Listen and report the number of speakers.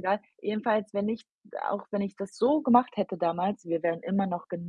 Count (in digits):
1